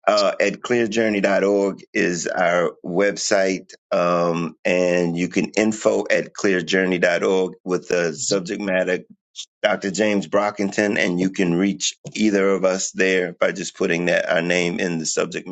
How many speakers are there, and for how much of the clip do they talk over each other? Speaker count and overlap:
1, no overlap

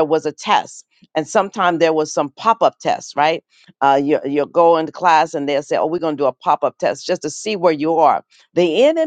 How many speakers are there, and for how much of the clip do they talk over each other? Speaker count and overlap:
1, no overlap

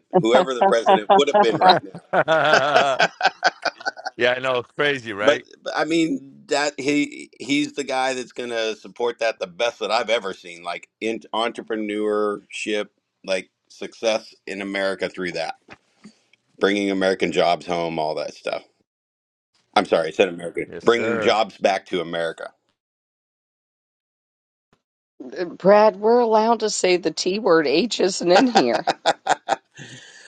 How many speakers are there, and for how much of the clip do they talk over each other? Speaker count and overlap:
3, about 3%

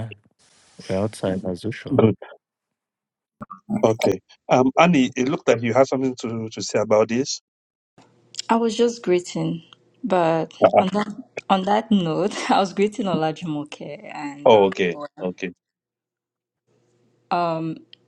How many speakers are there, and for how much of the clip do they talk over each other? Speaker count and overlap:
3, about 3%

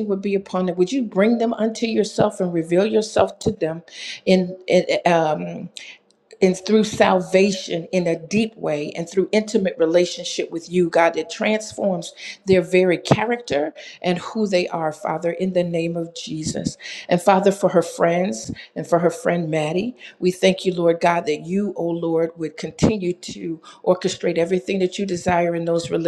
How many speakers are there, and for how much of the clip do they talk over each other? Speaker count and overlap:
1, no overlap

